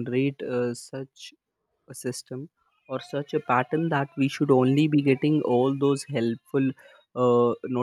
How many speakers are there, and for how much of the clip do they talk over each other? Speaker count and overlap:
1, no overlap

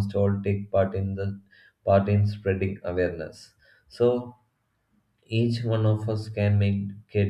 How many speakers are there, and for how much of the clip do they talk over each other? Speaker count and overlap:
1, no overlap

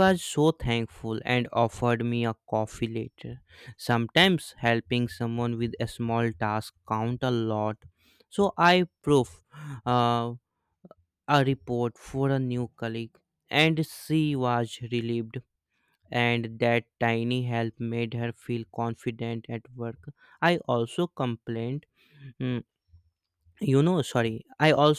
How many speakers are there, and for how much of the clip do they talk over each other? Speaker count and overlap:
1, no overlap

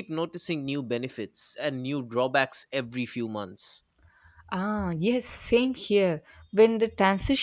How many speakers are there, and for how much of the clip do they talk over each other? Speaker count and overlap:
2, no overlap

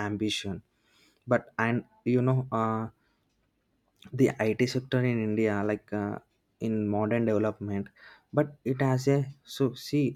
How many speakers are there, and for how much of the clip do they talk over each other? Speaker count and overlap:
1, no overlap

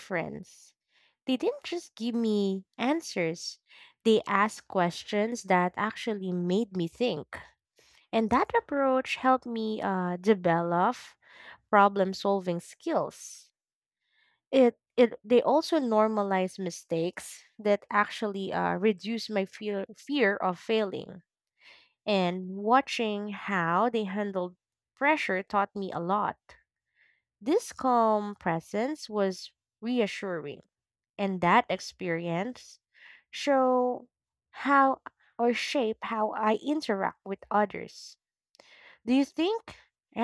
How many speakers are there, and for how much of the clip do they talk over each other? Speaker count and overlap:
1, no overlap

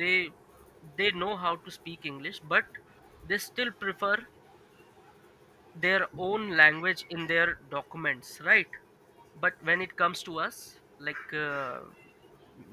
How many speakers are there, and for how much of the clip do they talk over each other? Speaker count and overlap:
1, no overlap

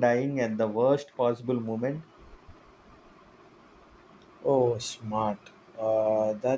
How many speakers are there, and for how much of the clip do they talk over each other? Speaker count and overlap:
2, no overlap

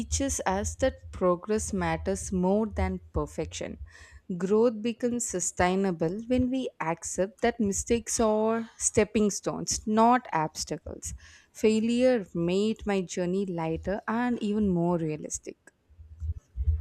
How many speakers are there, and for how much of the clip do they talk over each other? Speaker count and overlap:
1, no overlap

